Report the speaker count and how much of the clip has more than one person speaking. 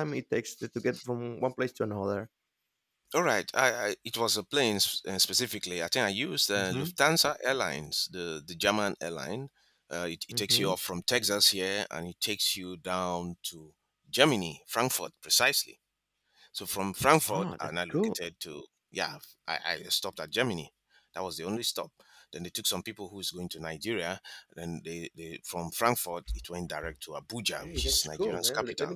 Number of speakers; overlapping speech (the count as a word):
two, about 10%